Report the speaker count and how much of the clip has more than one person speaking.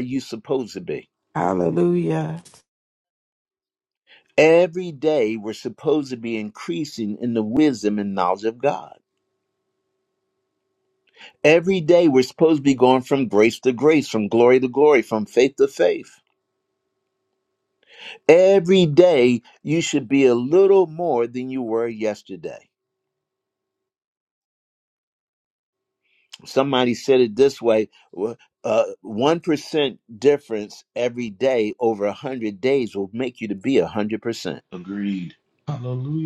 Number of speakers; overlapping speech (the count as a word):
three, no overlap